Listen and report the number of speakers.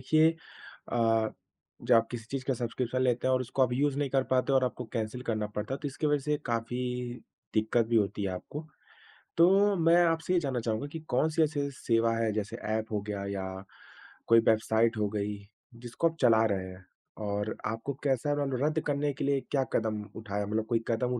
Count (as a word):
one